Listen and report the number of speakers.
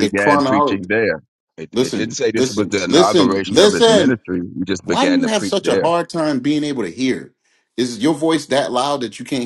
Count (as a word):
two